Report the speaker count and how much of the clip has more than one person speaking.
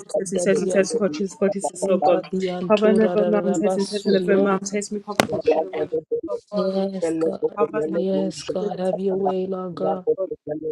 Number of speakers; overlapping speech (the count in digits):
3, about 61%